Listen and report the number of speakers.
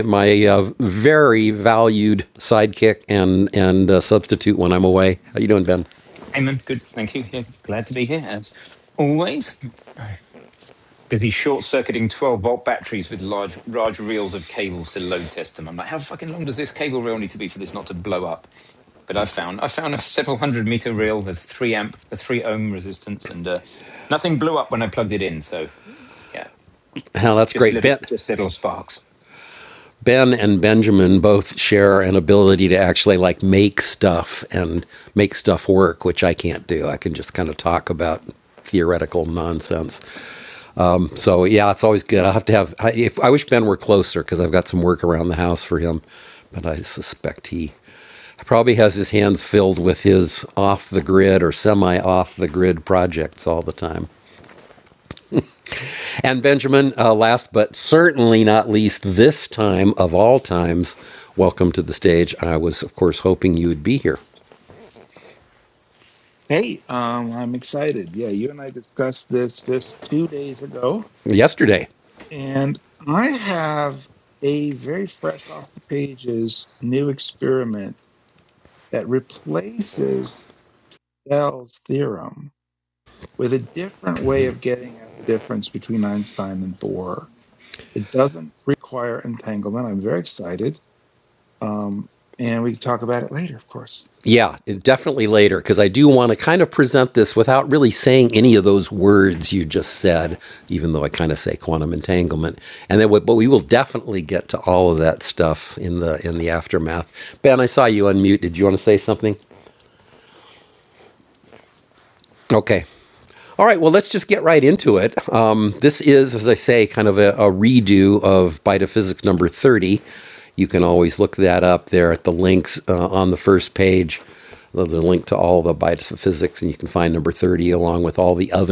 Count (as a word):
three